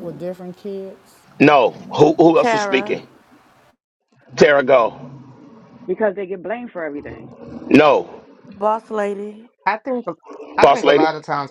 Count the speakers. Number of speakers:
5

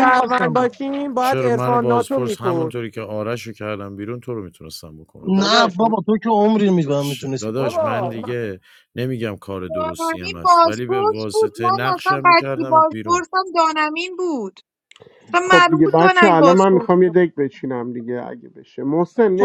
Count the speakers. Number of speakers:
5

